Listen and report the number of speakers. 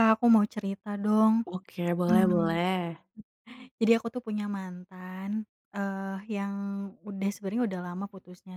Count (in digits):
2